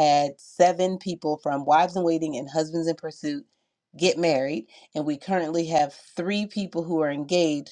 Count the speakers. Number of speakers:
one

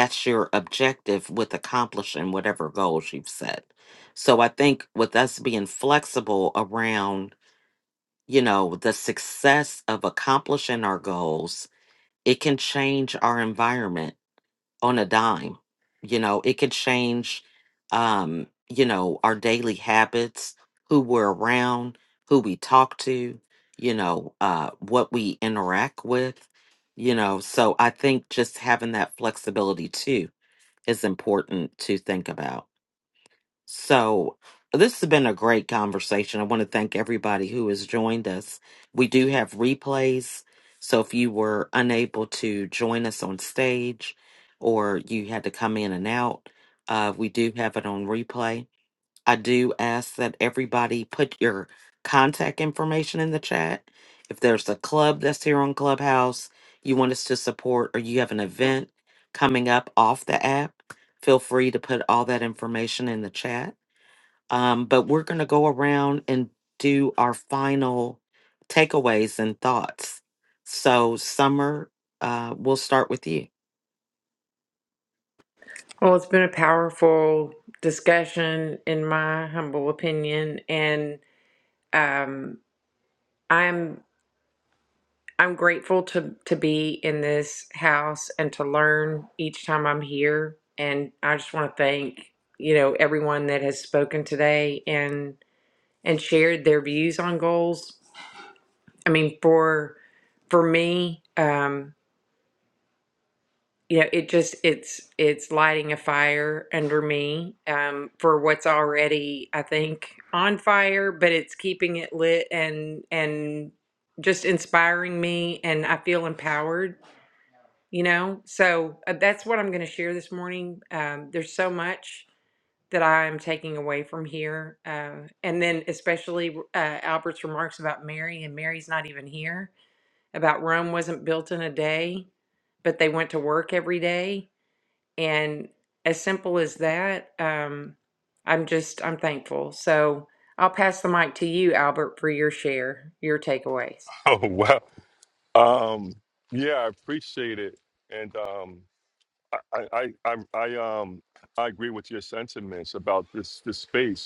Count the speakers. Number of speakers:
three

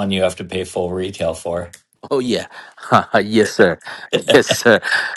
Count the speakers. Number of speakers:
two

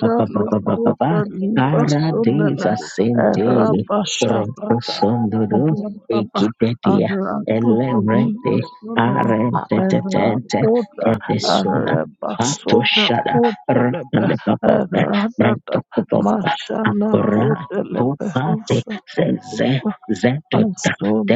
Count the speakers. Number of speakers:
two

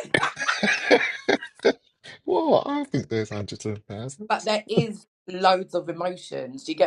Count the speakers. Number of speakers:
two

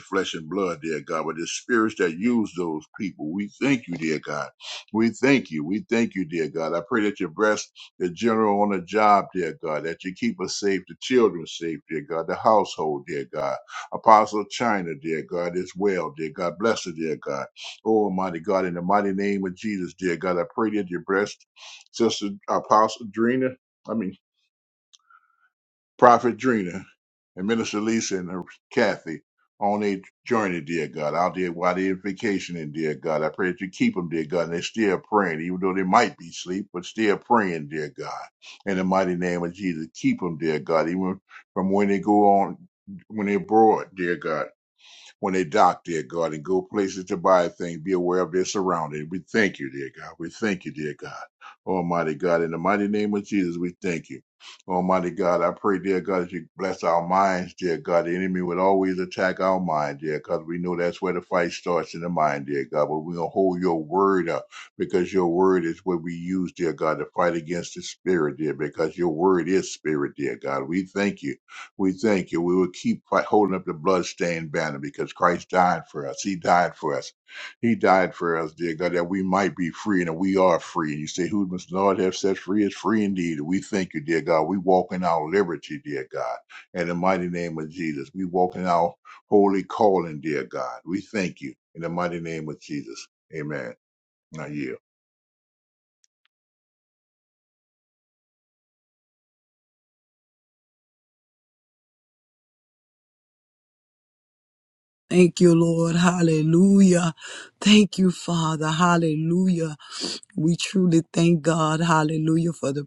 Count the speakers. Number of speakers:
two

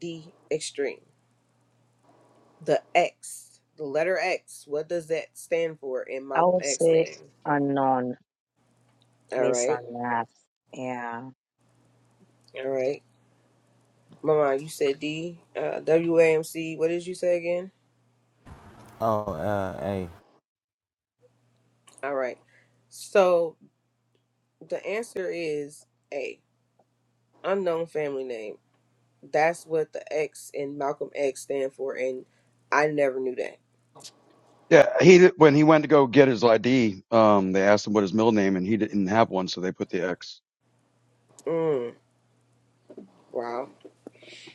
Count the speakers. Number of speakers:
four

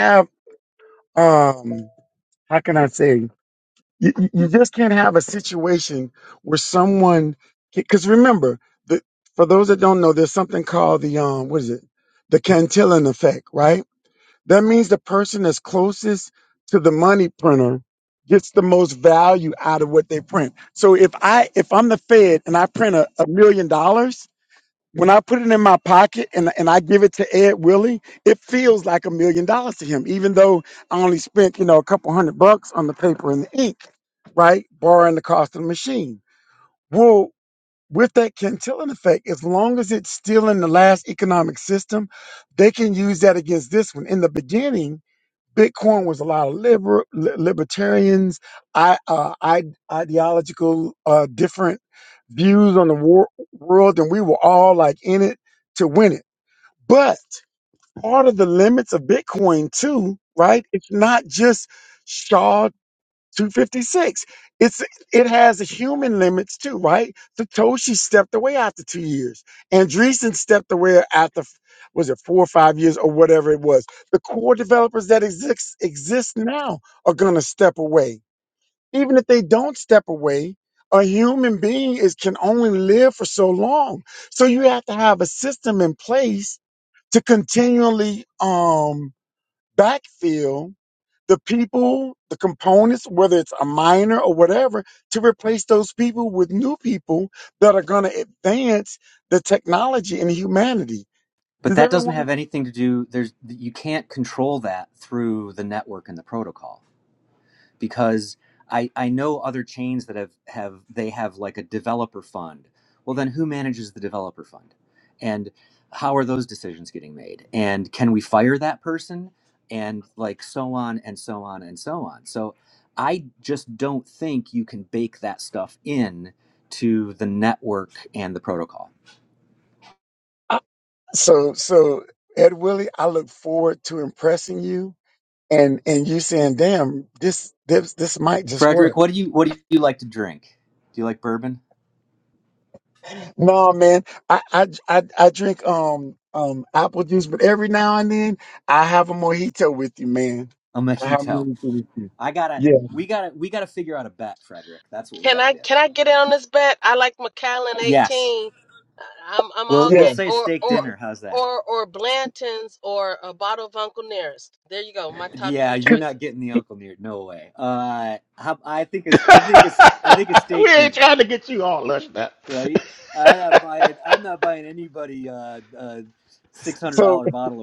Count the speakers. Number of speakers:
four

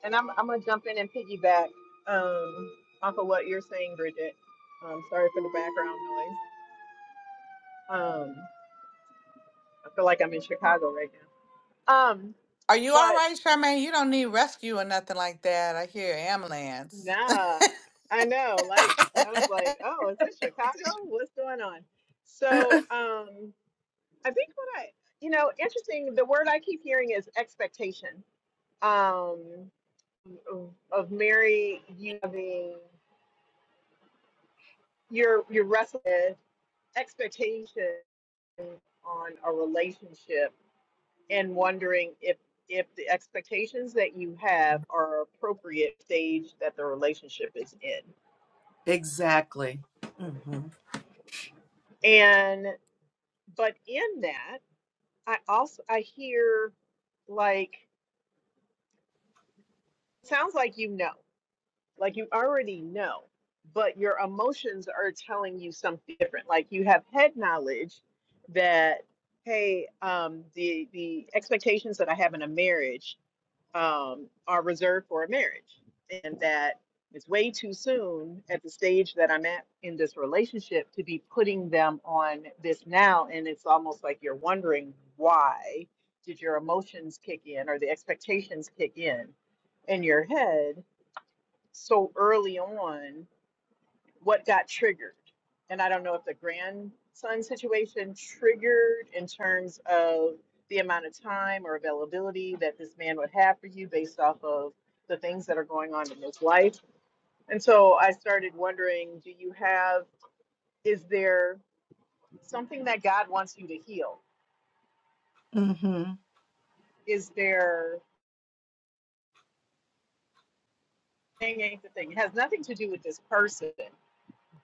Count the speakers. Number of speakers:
three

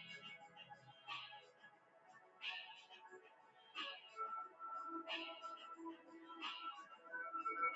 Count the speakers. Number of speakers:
zero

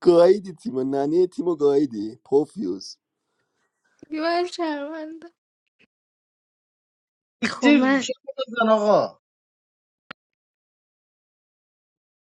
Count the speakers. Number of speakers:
three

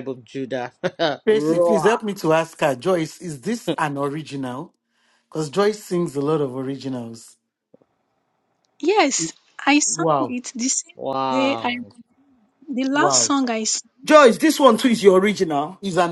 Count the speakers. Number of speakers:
four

